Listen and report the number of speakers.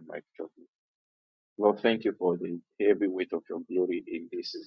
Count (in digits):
1